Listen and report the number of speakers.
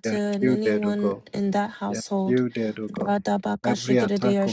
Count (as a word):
two